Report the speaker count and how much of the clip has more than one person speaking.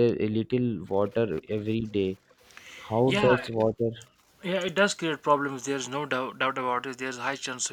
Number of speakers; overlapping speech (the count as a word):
two, about 4%